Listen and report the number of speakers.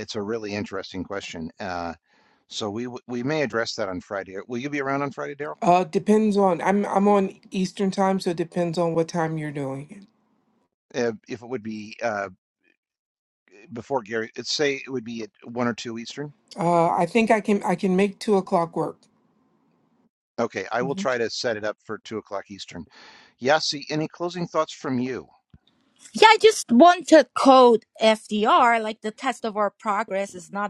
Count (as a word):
three